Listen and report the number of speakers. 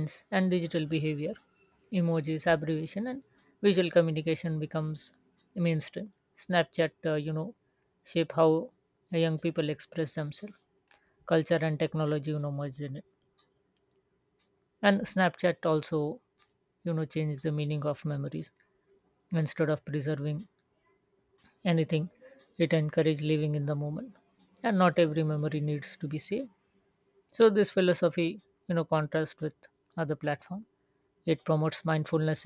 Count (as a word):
one